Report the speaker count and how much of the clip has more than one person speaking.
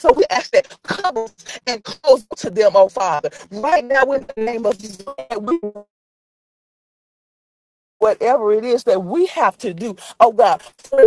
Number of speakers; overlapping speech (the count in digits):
1, no overlap